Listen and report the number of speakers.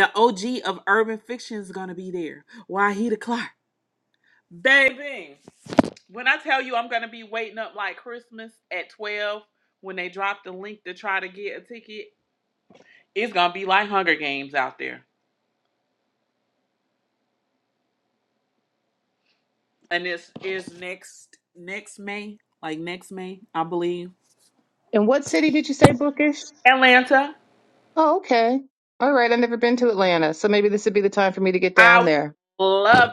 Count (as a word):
two